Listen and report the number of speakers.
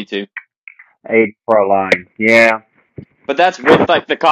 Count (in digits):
2